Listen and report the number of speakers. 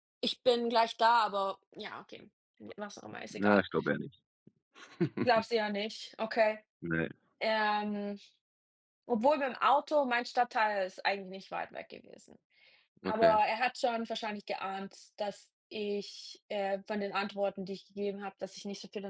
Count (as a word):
two